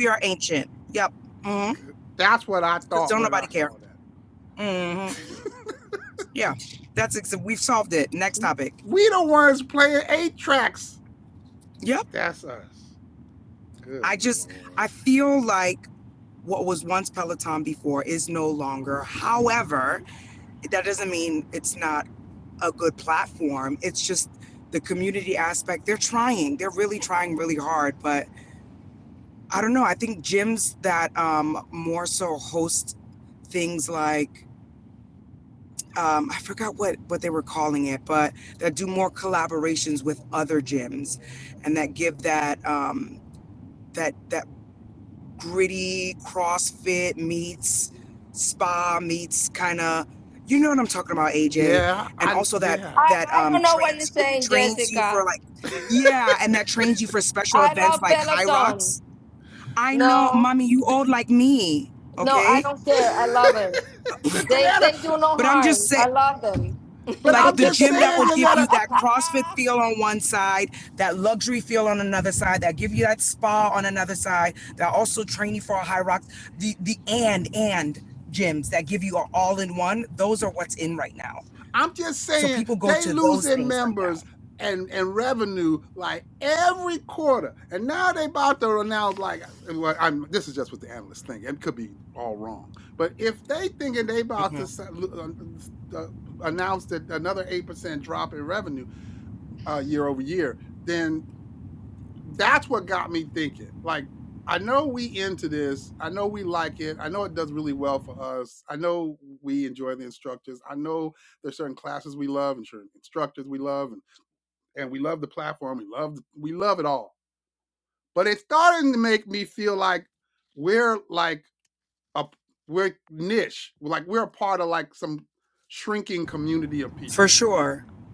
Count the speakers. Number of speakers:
3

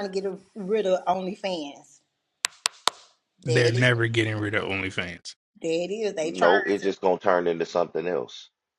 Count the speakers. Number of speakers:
3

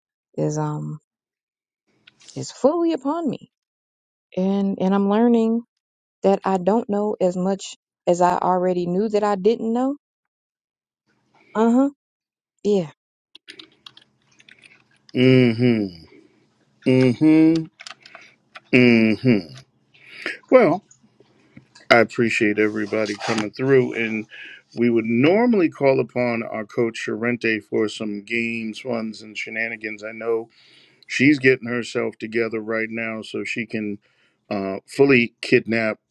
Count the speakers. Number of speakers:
2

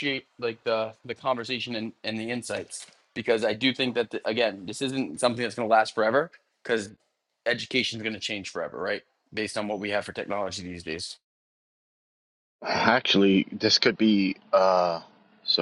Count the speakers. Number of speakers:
2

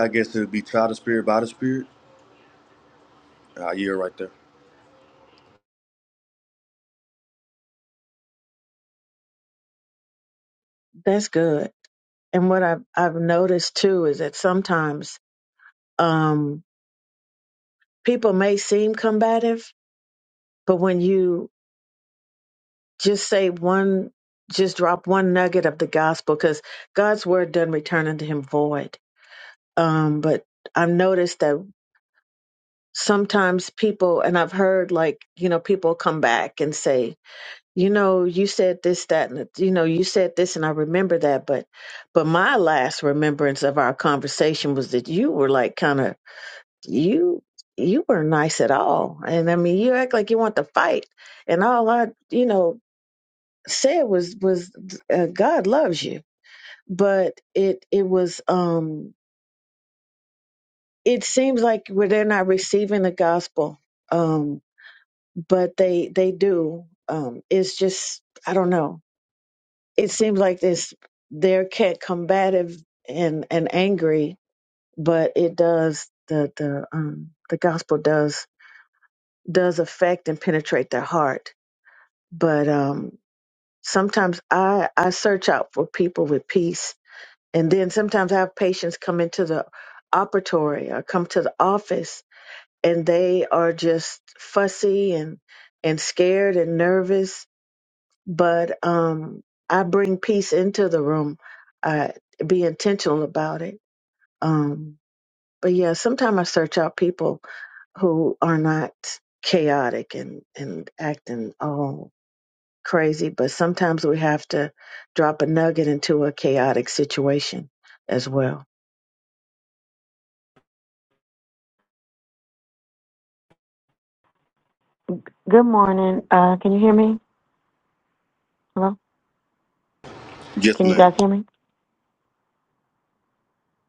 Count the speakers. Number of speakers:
3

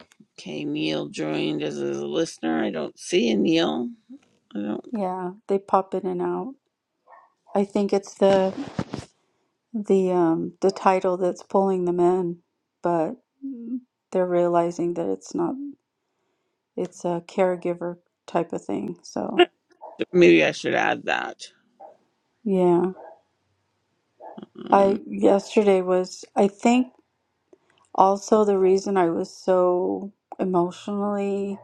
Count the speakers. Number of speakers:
2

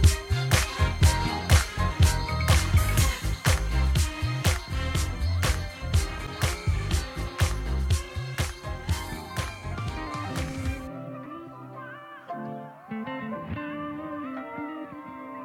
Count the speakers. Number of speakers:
0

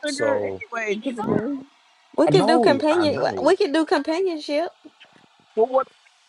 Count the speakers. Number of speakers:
3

